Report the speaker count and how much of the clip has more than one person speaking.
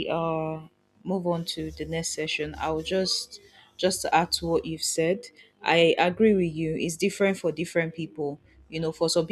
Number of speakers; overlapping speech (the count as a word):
one, no overlap